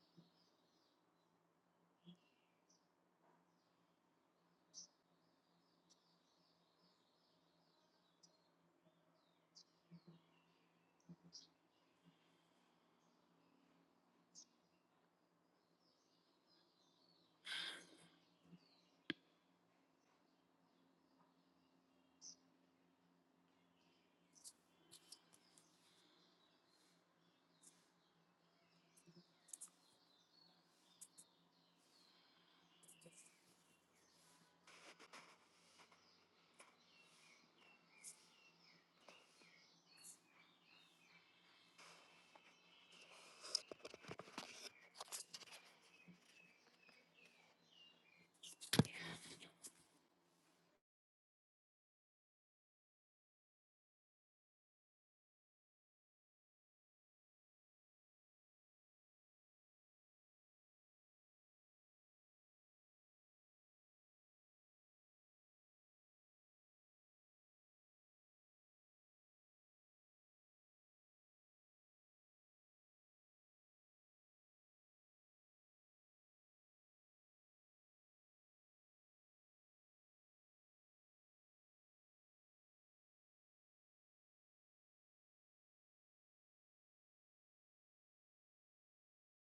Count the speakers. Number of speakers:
0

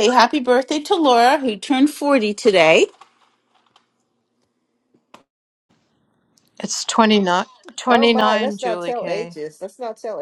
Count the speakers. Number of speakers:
3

